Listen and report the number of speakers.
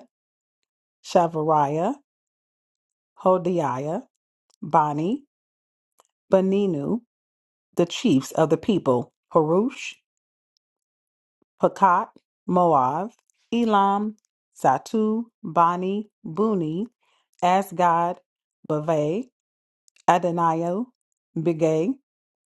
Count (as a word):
one